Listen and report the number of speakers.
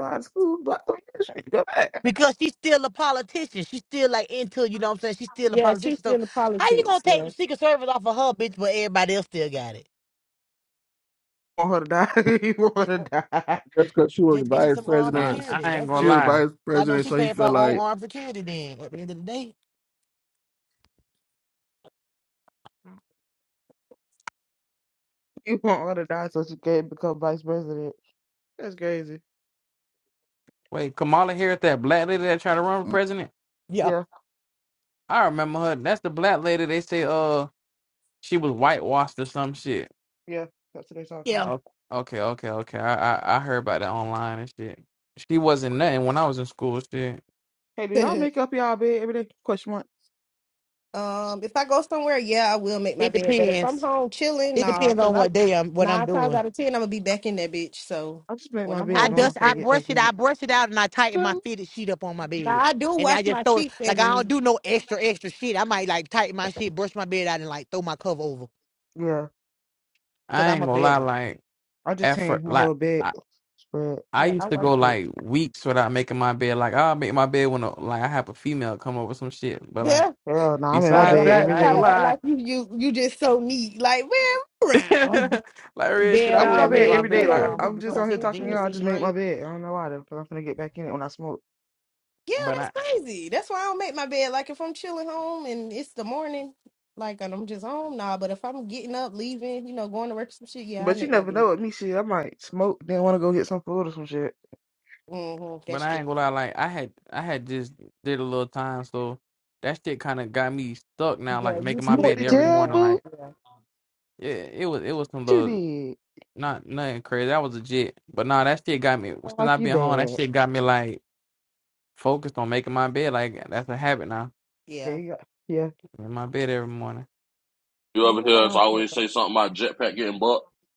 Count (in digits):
6